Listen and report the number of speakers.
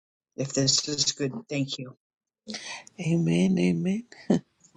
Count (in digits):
2